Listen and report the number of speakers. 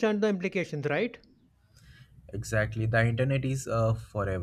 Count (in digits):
2